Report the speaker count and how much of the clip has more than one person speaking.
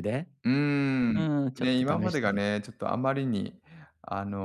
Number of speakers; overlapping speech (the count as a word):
two, about 28%